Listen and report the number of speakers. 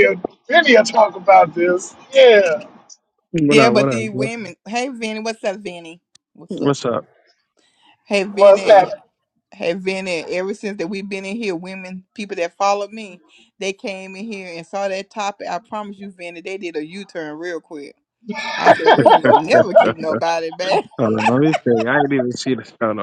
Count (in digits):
3